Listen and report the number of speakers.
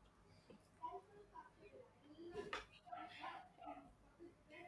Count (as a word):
zero